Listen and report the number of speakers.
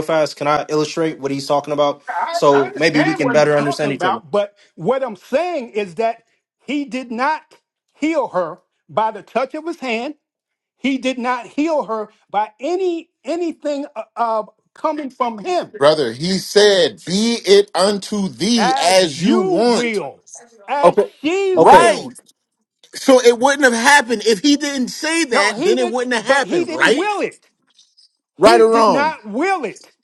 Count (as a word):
three